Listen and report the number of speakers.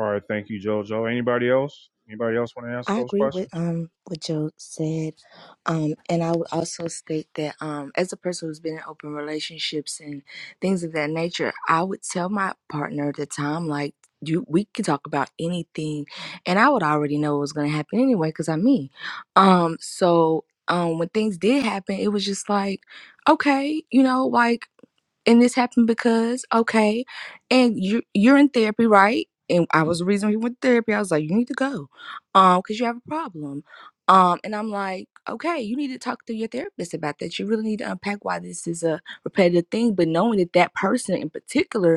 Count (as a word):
two